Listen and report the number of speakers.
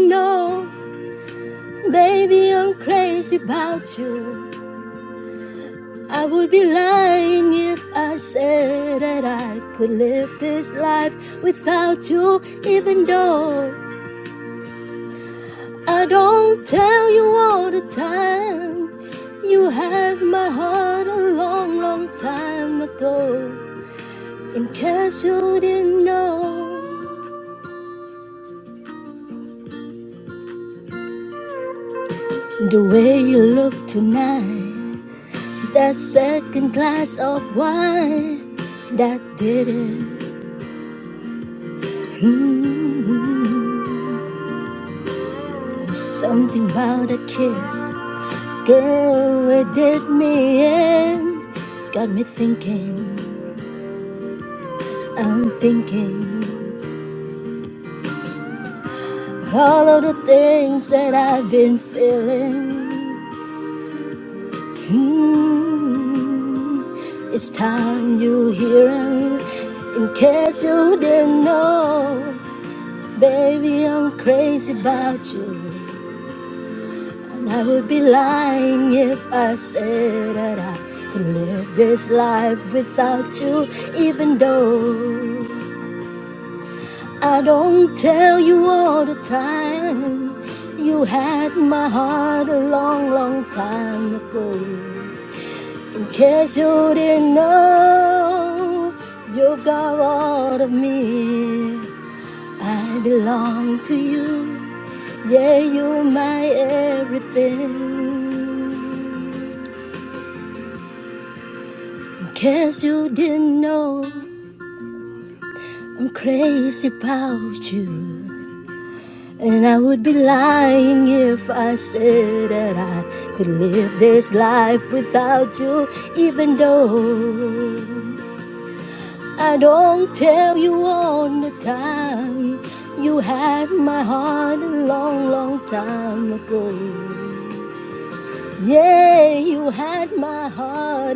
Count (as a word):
one